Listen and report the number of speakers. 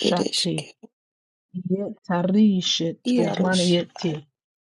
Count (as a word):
two